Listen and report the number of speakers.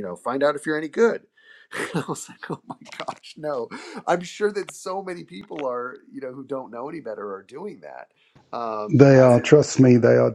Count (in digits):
2